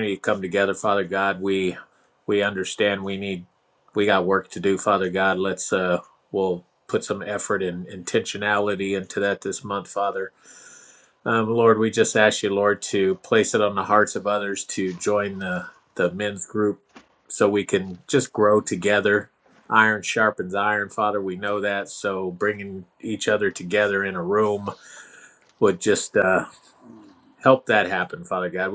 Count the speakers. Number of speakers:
1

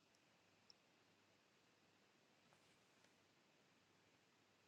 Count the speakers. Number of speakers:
0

